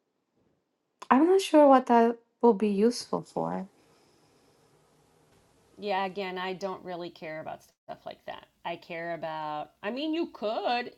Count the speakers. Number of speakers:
two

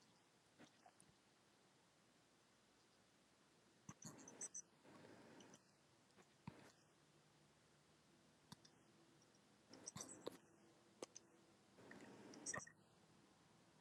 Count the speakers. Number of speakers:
zero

